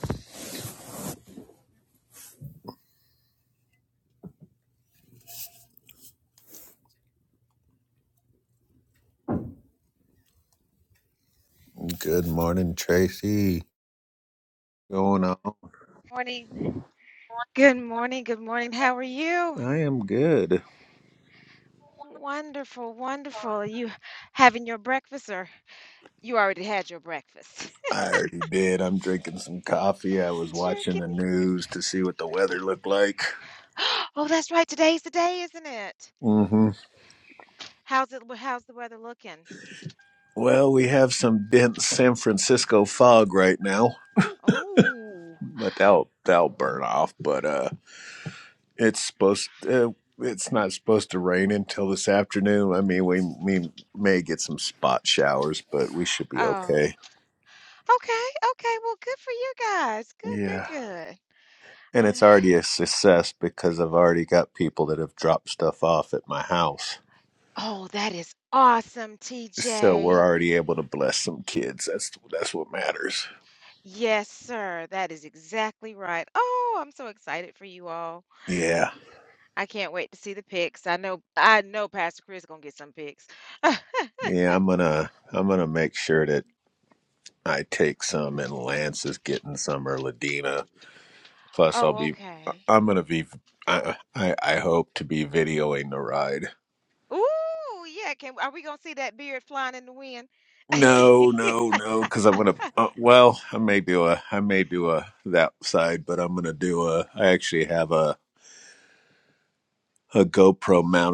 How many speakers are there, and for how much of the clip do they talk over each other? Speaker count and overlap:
2, about 2%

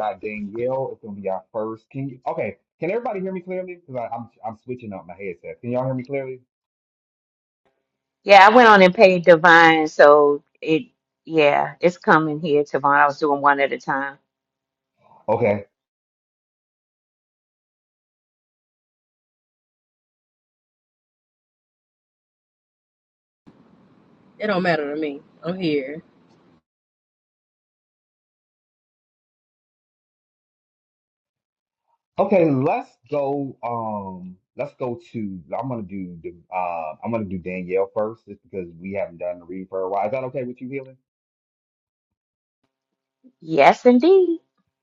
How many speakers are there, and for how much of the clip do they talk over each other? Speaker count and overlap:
3, no overlap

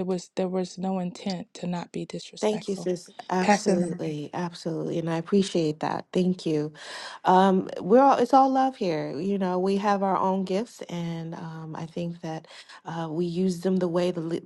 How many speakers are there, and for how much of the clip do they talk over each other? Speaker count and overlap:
2, about 8%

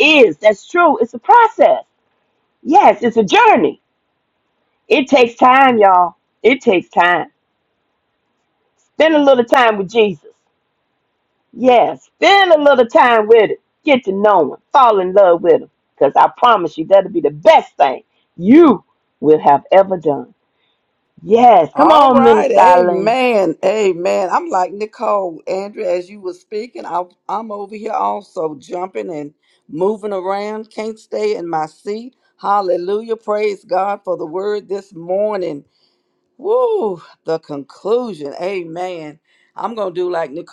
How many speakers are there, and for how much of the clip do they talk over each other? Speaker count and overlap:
2, about 3%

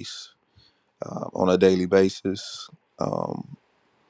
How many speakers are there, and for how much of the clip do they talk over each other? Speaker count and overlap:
1, no overlap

